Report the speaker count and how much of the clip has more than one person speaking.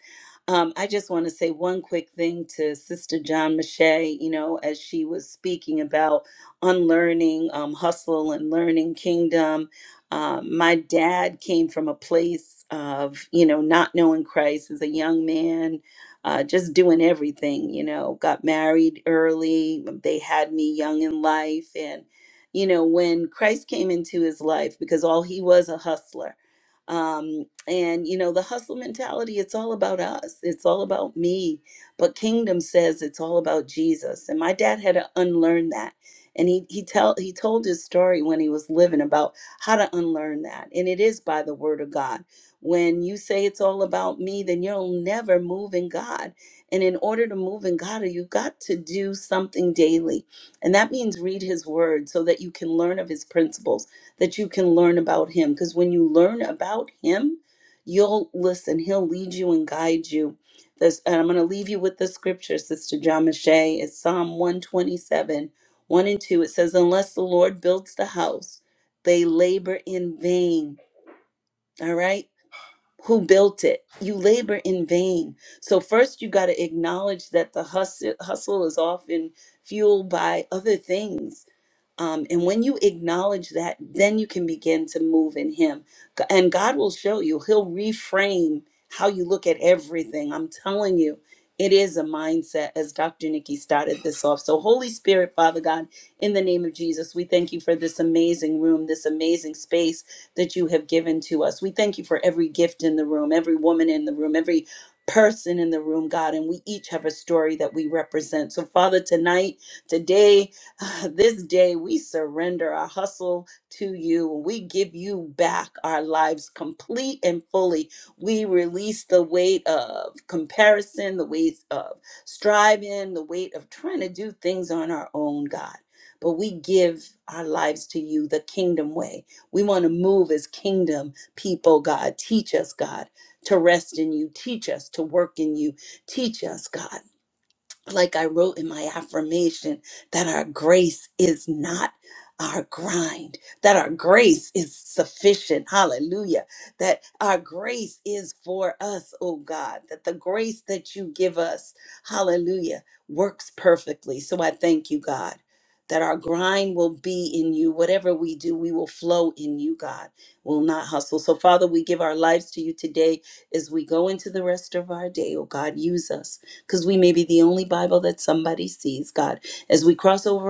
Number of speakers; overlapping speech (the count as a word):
one, no overlap